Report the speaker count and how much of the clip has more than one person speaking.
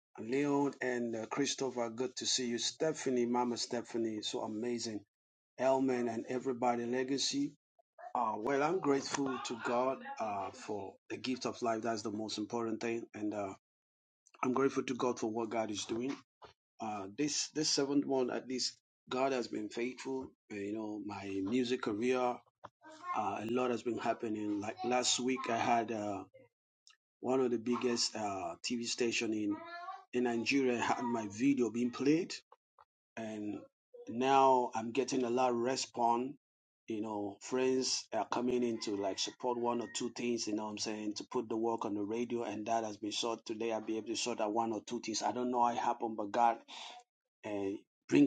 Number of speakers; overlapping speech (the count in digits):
1, no overlap